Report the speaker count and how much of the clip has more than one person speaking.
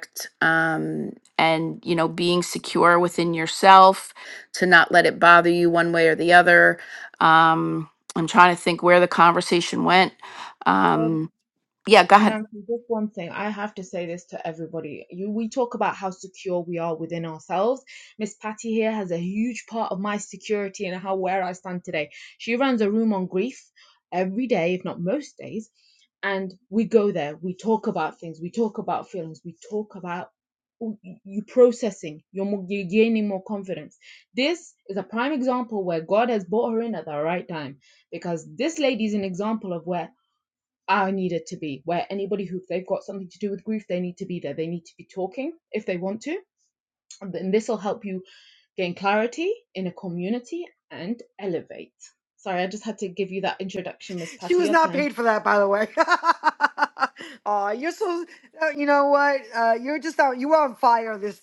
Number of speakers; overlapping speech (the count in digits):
3, about 1%